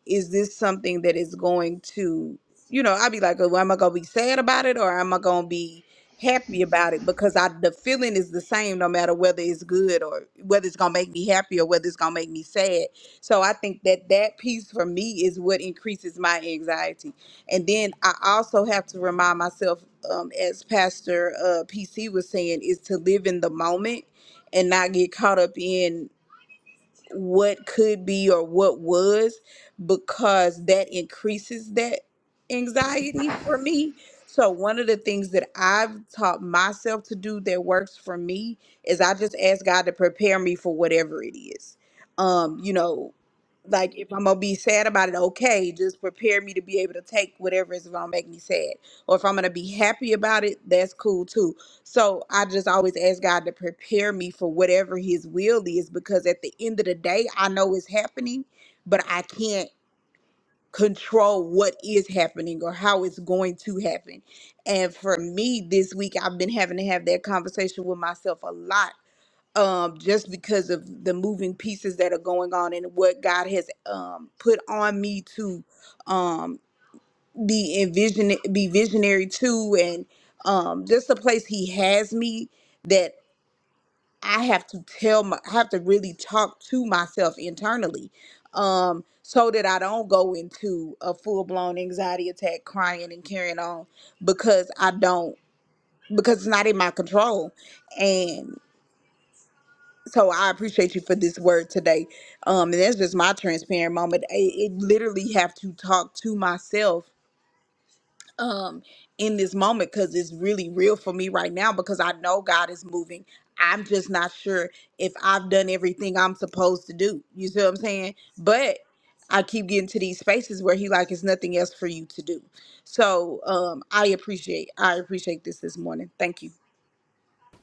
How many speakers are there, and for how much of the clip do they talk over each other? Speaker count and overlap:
1, no overlap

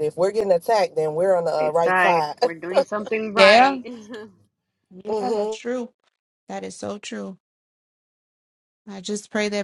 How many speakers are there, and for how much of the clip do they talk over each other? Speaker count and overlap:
3, about 18%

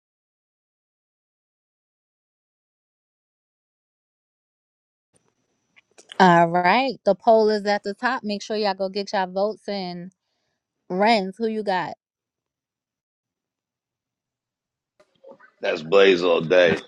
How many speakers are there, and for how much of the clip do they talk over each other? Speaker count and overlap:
2, no overlap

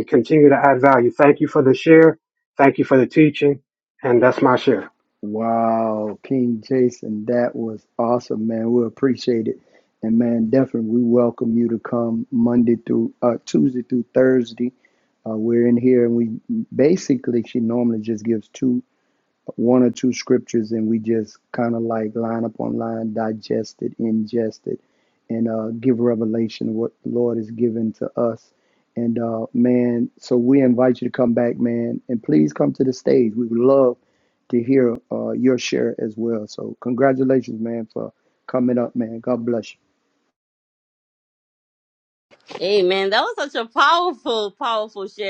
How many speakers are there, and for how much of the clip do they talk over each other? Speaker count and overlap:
3, no overlap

